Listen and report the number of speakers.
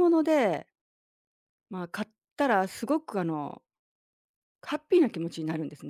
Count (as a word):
one